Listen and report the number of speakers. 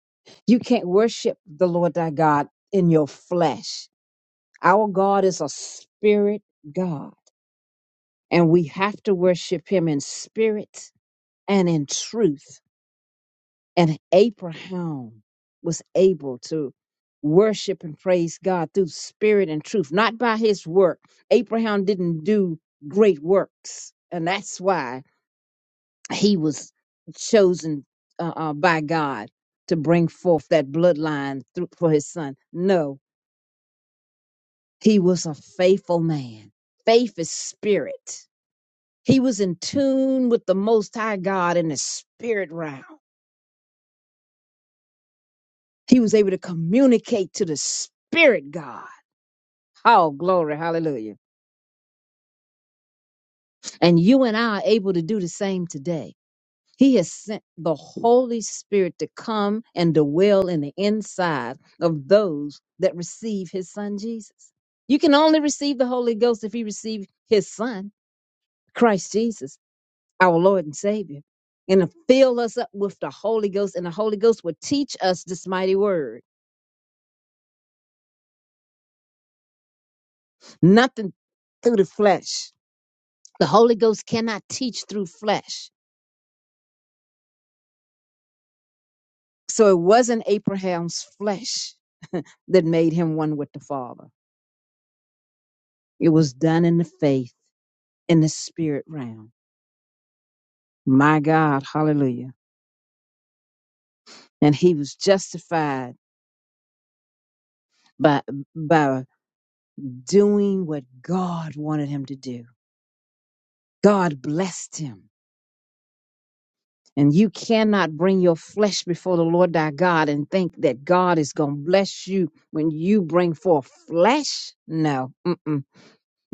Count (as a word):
one